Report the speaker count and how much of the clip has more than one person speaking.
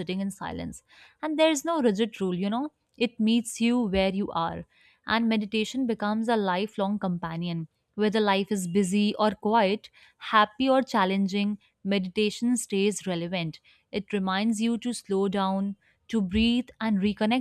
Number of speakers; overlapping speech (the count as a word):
one, no overlap